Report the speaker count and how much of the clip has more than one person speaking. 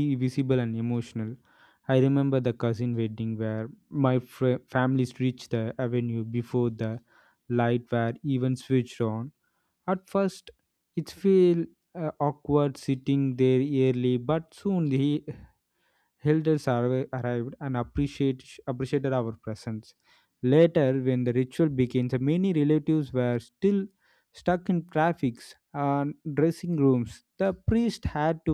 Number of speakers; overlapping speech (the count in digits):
1, no overlap